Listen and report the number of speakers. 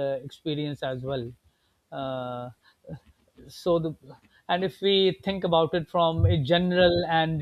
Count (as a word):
one